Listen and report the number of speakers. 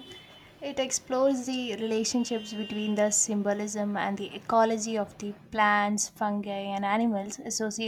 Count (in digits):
1